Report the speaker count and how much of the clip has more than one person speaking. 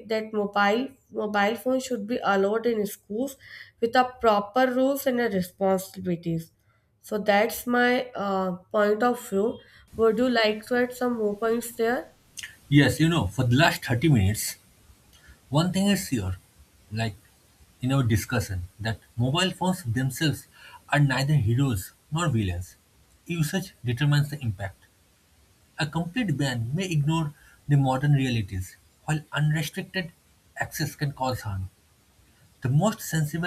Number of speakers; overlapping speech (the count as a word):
two, no overlap